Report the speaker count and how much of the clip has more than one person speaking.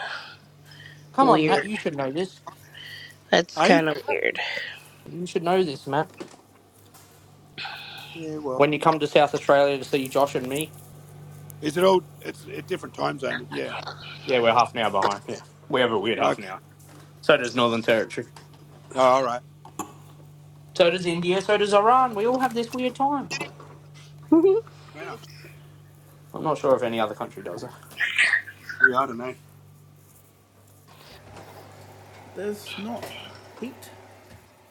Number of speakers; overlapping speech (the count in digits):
4, about 3%